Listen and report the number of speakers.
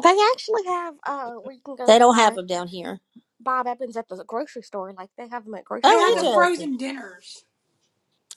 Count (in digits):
3